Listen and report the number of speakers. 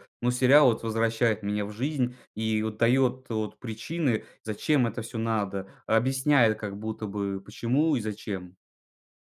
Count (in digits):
1